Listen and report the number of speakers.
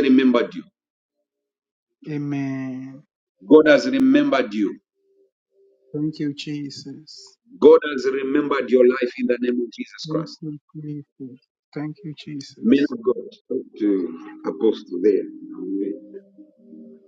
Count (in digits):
2